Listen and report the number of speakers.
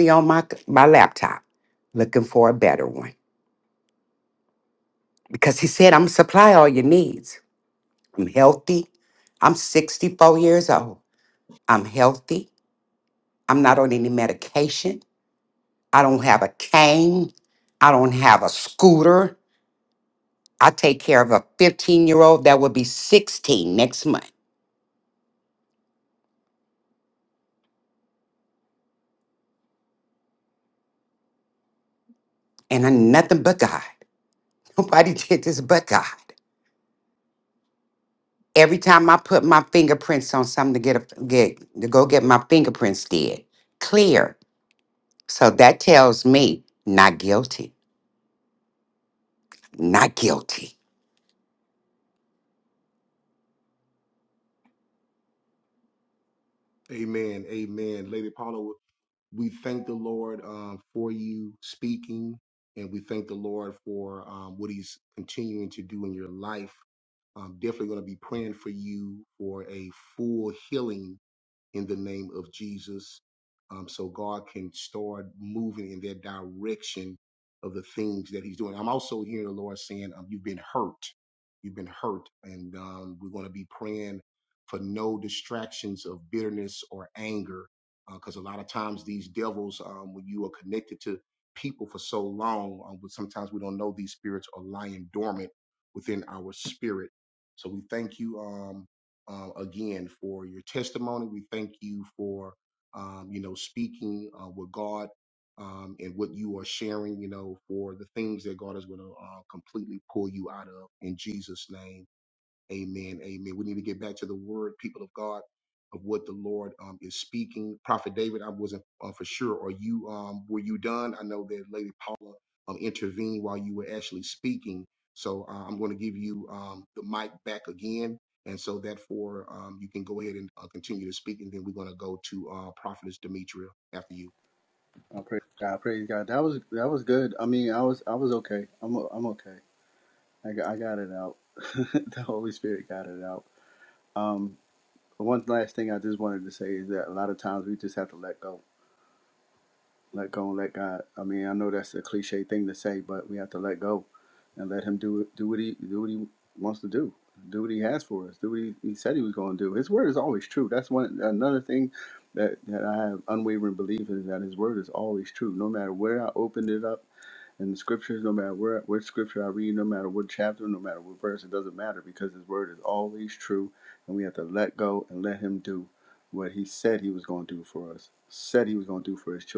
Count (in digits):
3